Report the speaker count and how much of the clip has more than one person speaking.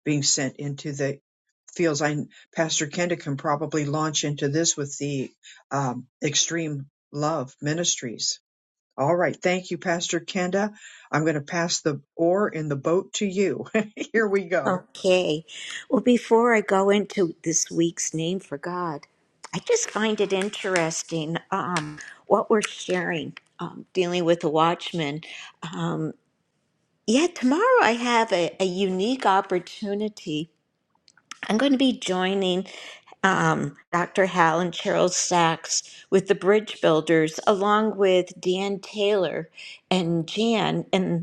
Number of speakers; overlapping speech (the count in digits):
2, under 1%